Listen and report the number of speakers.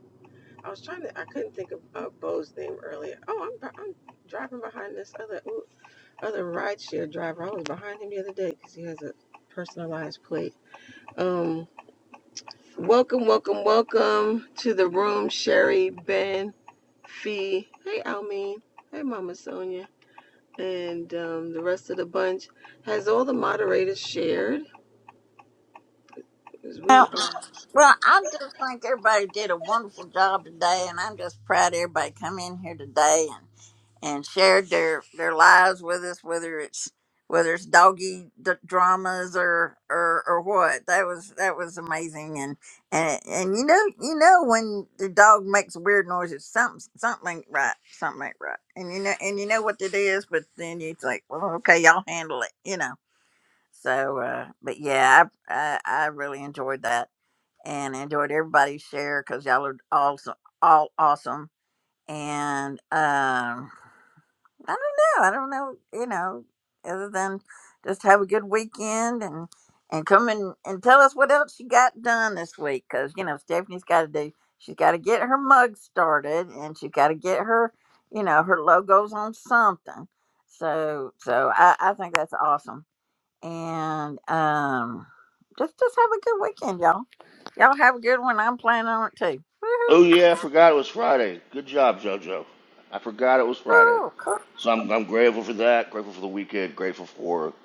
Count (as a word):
three